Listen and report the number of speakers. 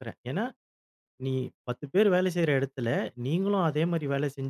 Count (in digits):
1